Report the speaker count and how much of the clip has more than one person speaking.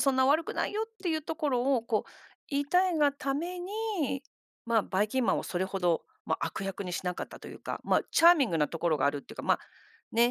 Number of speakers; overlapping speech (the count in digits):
1, no overlap